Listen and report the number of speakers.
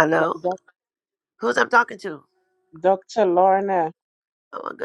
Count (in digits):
2